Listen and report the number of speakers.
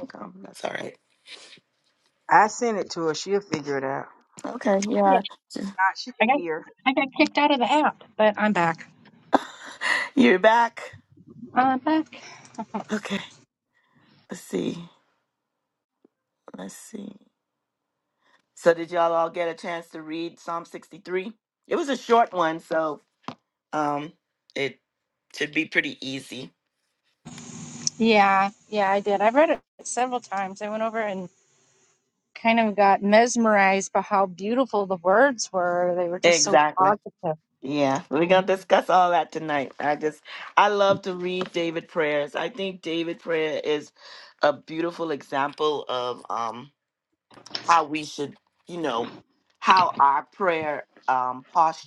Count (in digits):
3